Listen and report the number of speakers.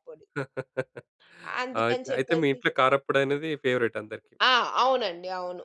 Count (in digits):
2